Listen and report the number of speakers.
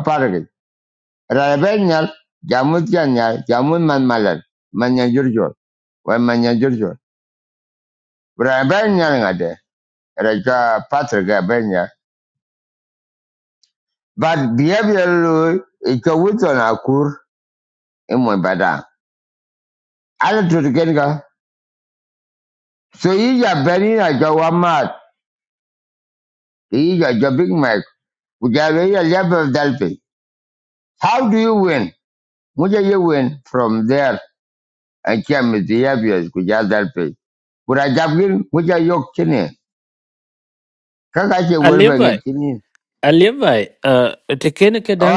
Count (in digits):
2